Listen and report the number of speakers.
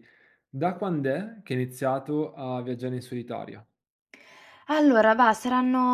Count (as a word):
two